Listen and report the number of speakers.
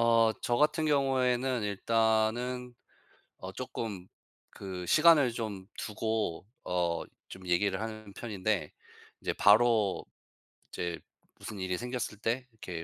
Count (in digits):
1